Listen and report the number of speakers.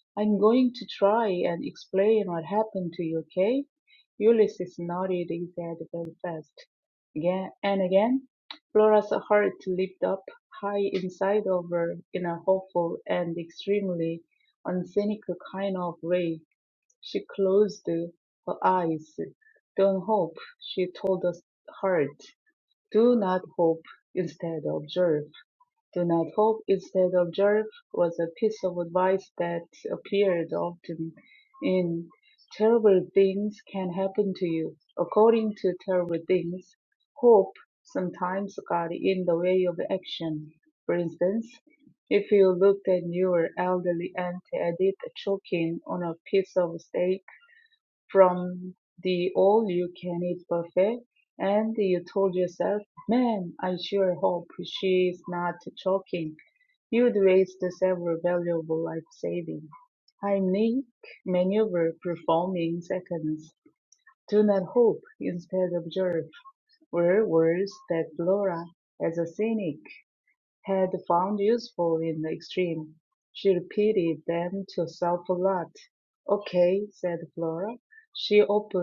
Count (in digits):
1